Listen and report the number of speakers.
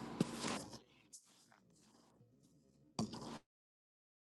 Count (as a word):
zero